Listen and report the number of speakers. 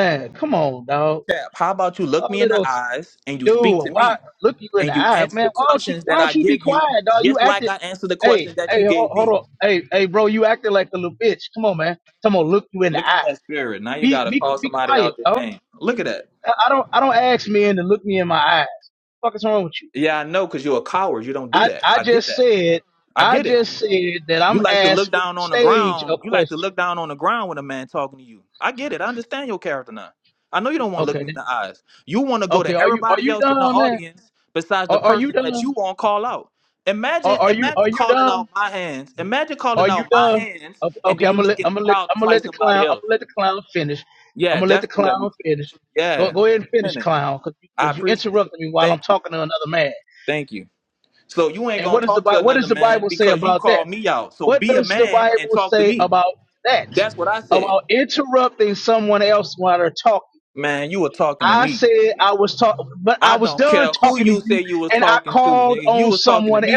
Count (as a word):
two